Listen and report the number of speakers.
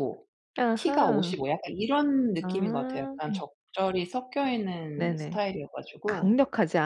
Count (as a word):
two